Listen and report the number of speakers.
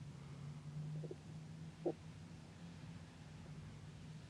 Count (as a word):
zero